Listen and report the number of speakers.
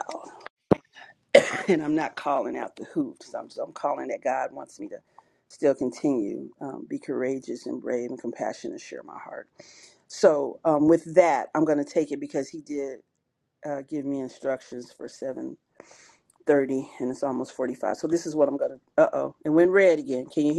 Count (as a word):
one